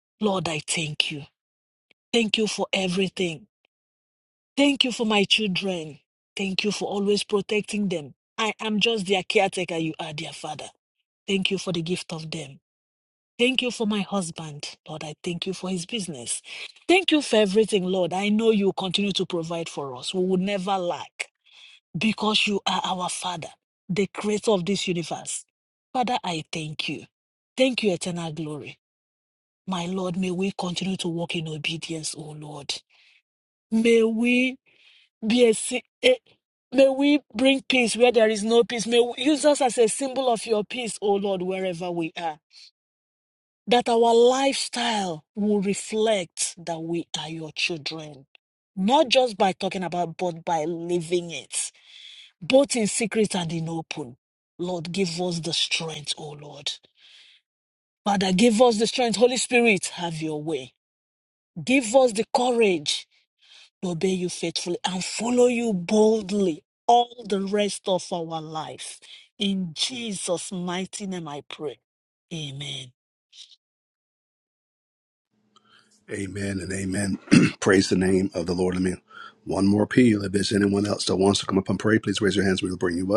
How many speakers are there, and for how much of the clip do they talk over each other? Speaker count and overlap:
two, no overlap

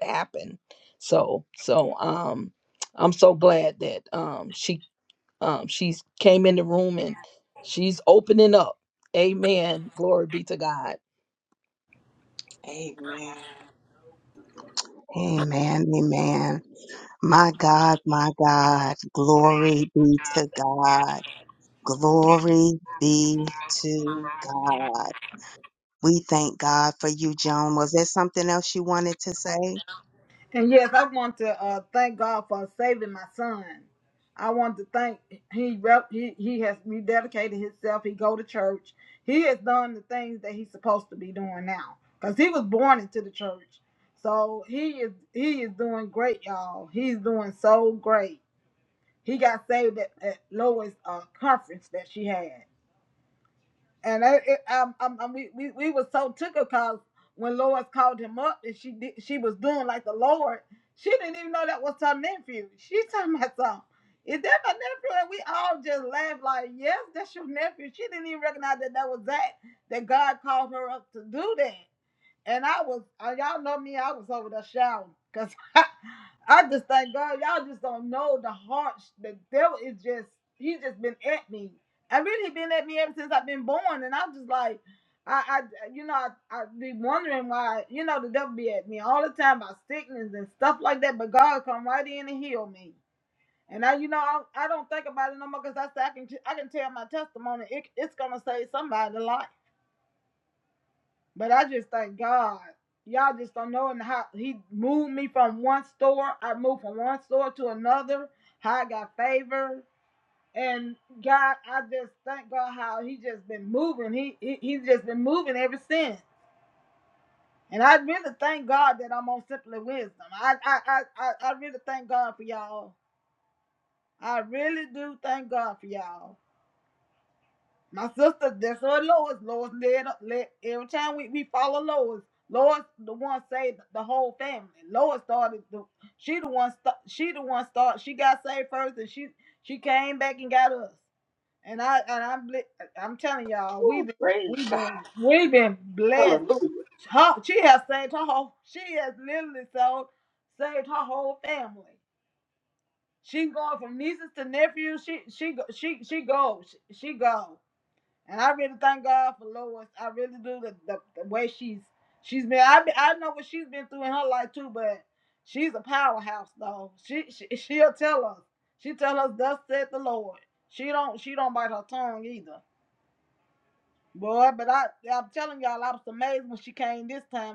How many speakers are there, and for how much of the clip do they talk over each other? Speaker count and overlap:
four, about 1%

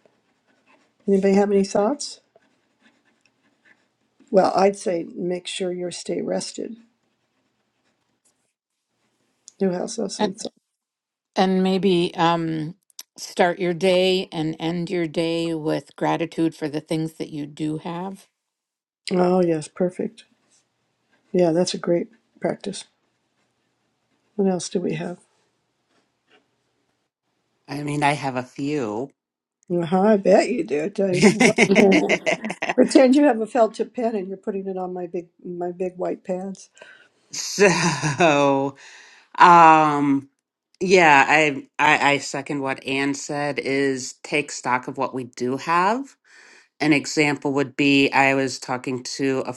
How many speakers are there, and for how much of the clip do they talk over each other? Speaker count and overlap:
three, under 1%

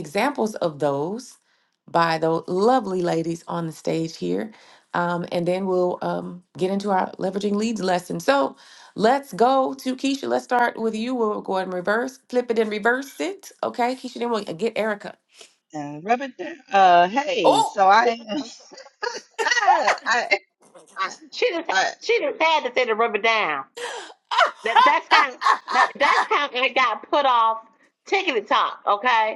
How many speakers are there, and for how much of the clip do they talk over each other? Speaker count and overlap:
three, about 2%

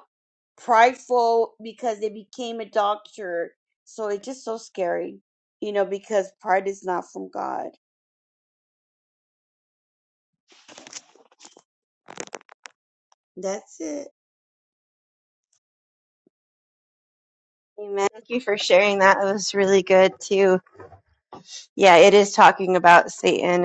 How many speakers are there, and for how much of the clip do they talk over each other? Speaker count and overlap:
two, no overlap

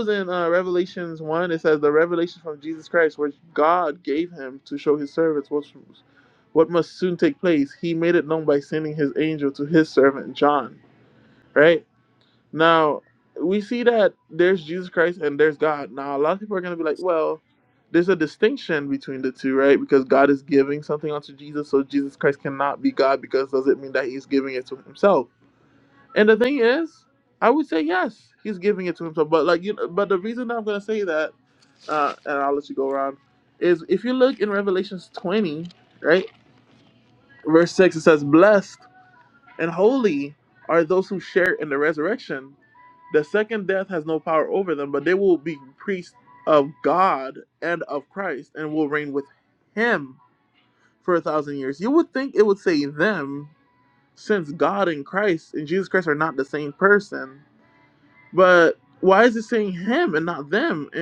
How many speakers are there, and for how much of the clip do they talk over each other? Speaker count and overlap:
one, no overlap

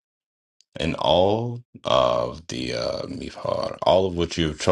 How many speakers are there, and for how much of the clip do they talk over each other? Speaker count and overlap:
one, no overlap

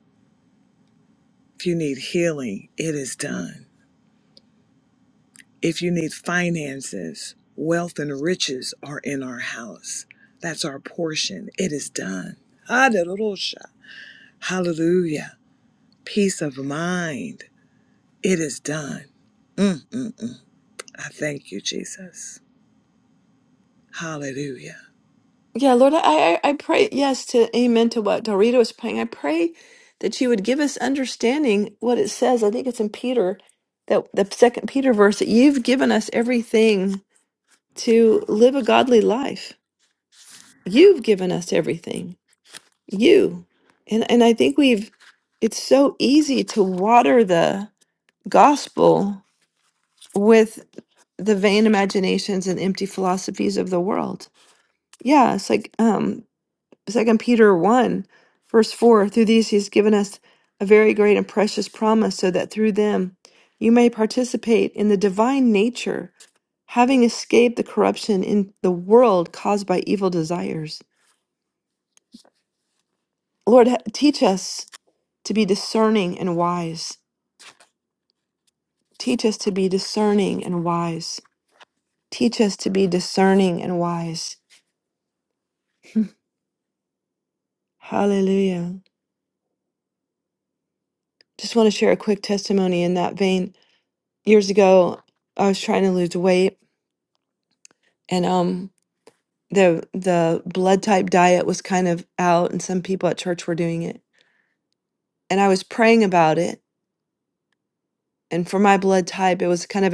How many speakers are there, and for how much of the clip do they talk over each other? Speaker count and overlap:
two, no overlap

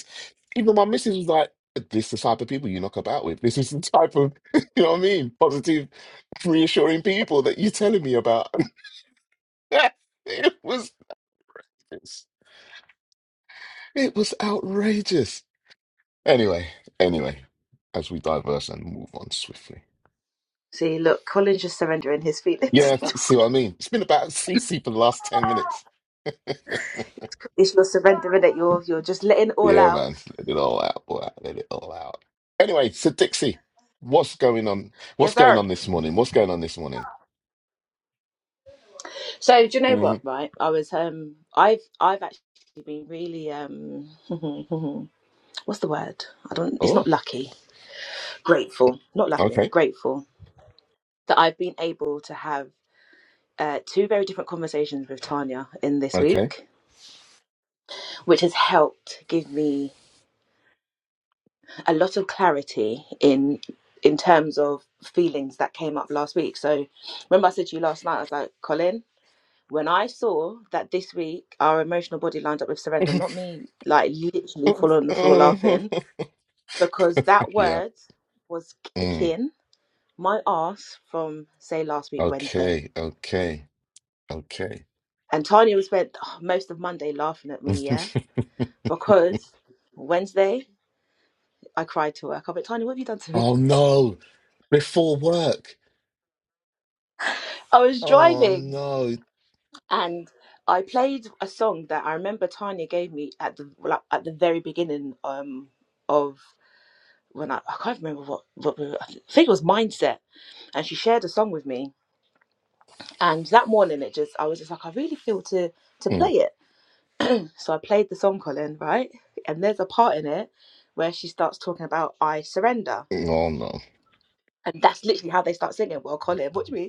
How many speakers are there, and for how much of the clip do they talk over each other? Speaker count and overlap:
two, about 4%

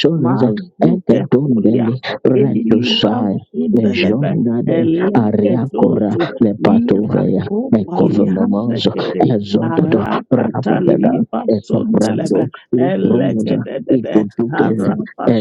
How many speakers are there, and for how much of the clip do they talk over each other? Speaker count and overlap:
two, about 73%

